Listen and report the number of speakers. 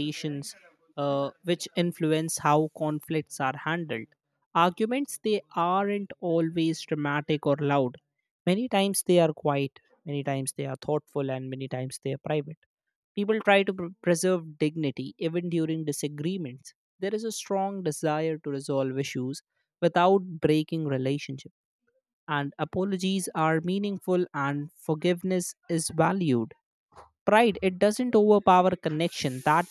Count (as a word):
one